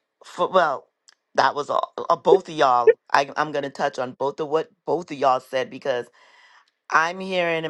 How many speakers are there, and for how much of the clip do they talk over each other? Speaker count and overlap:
one, no overlap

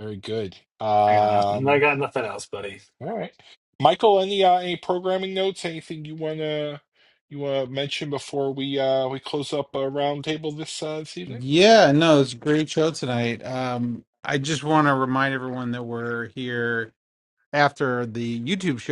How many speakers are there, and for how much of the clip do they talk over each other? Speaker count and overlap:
three, about 3%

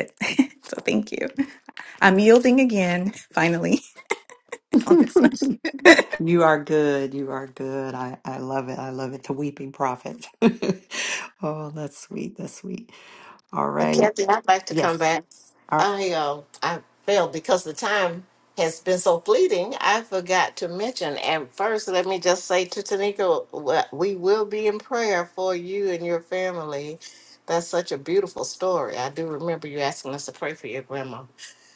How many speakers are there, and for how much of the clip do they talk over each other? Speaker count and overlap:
three, about 2%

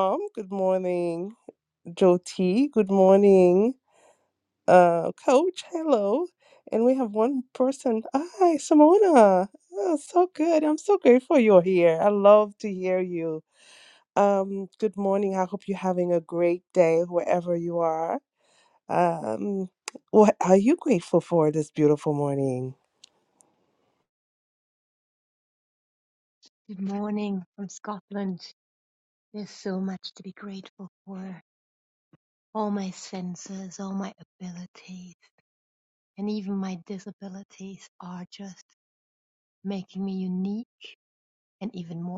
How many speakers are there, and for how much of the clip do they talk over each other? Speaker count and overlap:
two, no overlap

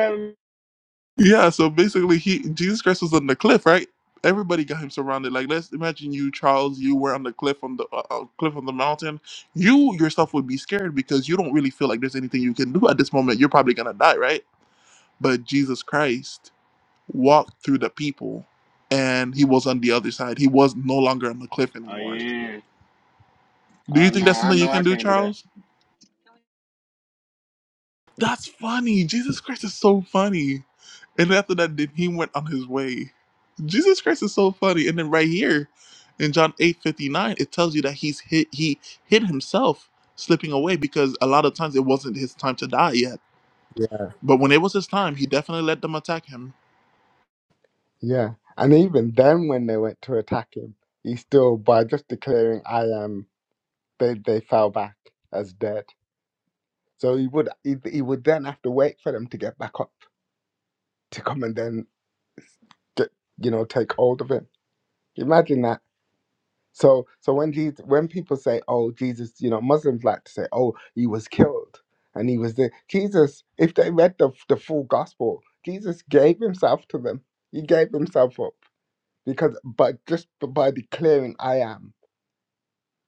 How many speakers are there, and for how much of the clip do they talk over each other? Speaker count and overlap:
three, about 2%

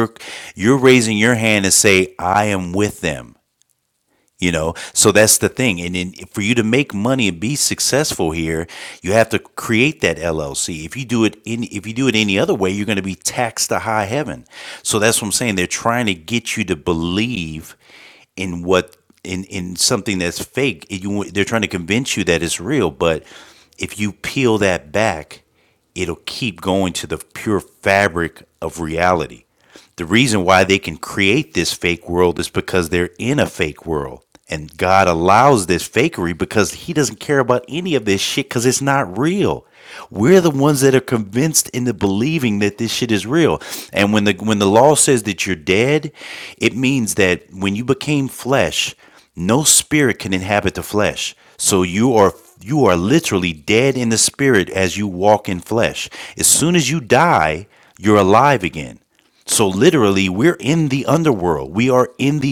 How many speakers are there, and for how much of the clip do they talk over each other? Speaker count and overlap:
one, no overlap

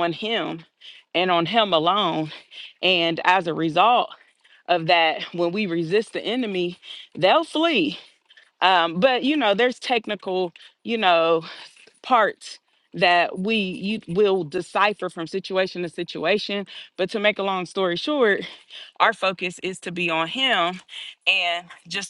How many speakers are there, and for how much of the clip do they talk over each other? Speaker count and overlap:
one, no overlap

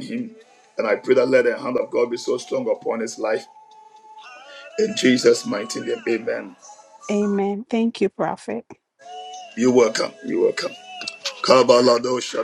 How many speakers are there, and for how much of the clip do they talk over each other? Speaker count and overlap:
two, no overlap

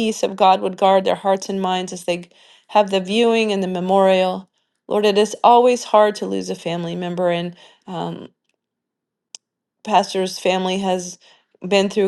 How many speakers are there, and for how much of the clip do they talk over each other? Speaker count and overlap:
one, no overlap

